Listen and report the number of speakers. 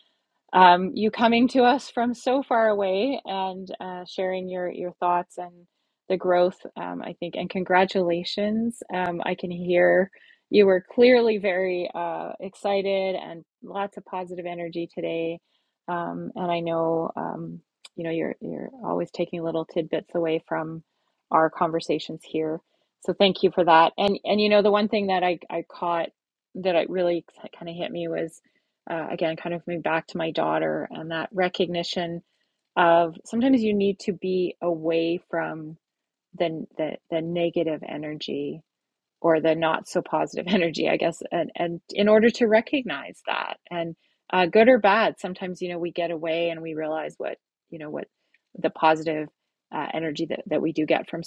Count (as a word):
one